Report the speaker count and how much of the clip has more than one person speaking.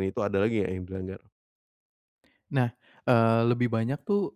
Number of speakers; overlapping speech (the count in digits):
2, no overlap